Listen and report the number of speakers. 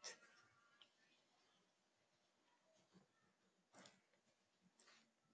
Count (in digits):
0